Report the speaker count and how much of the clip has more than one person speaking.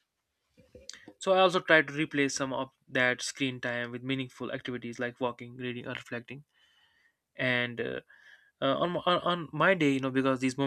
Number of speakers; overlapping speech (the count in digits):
1, no overlap